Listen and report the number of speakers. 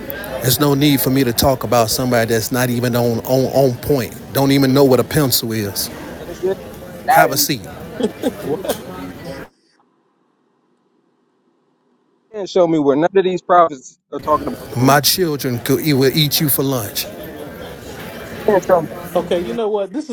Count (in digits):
3